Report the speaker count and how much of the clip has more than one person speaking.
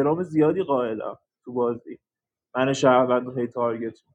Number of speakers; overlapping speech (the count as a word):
one, no overlap